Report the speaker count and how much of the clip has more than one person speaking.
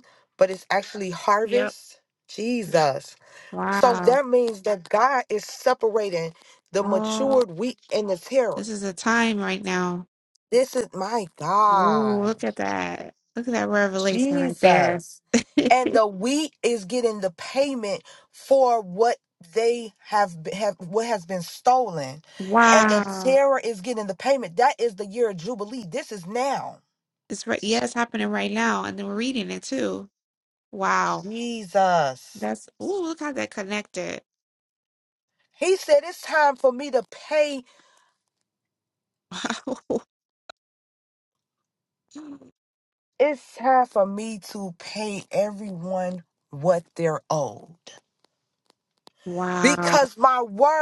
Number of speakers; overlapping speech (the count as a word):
two, about 8%